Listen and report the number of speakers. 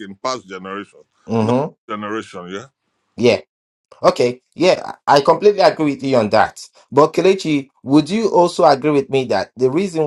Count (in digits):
2